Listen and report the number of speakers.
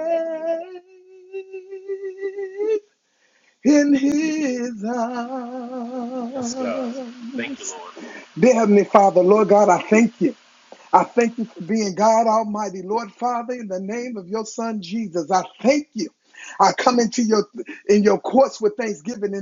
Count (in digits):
2